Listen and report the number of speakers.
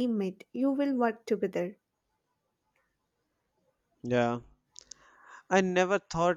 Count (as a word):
two